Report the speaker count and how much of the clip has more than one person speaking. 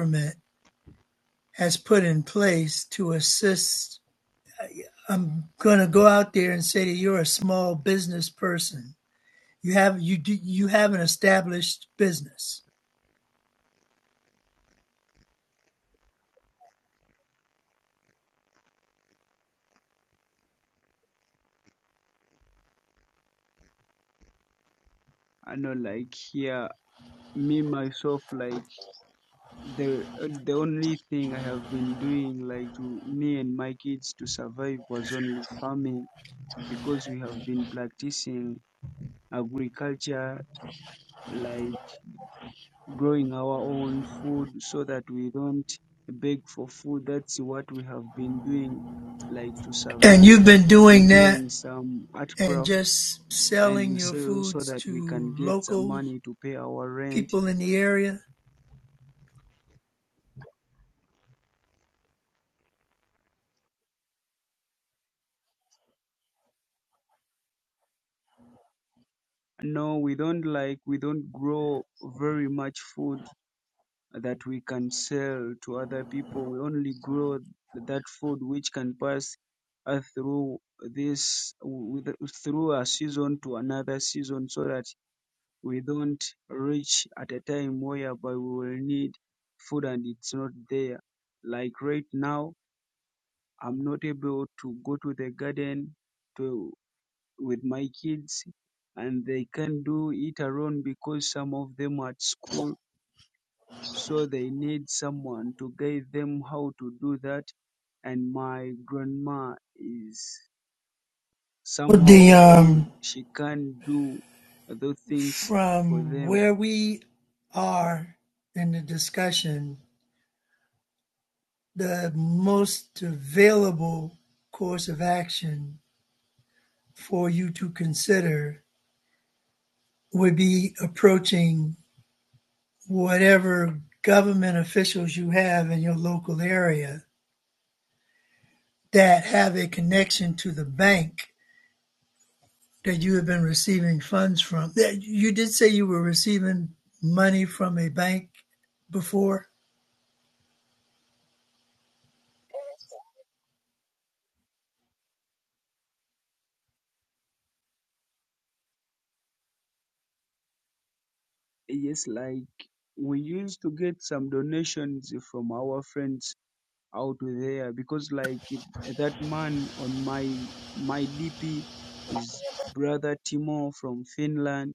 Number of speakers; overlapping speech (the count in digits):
2, about 3%